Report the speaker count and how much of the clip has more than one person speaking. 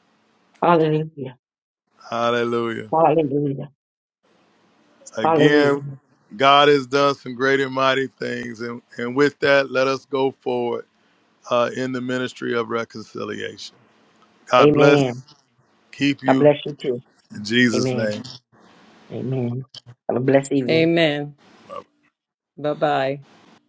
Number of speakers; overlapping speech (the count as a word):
three, about 7%